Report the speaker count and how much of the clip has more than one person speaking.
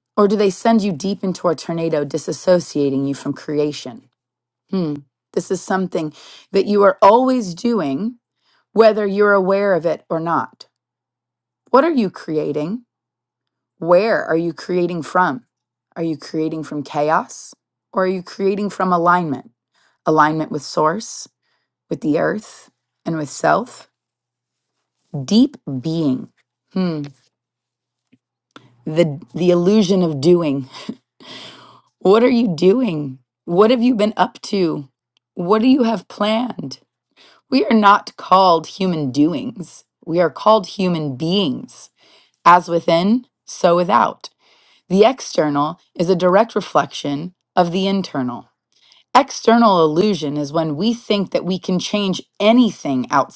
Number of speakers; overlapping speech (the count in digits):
1, no overlap